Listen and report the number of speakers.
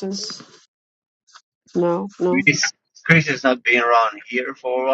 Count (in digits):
2